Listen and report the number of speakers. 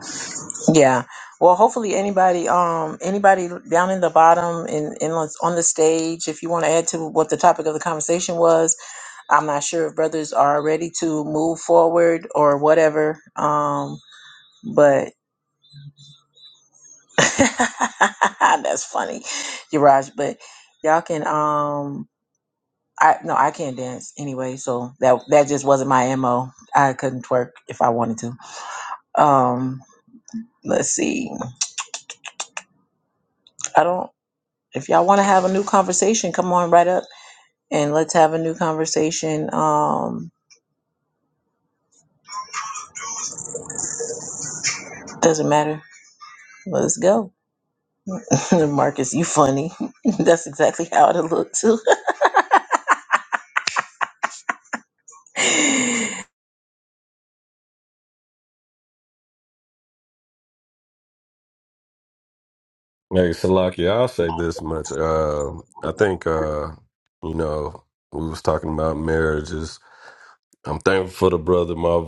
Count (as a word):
two